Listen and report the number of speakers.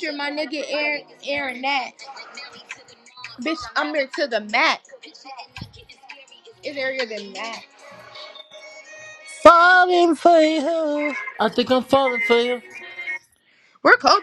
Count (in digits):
3